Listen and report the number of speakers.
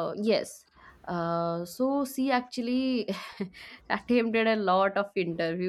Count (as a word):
one